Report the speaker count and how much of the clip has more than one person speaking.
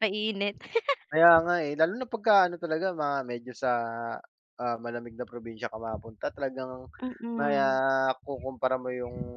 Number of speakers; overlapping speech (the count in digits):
2, about 4%